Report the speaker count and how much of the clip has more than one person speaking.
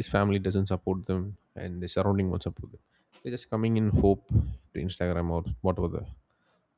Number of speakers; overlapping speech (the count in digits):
1, no overlap